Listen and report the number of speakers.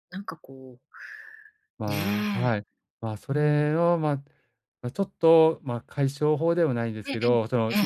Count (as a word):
two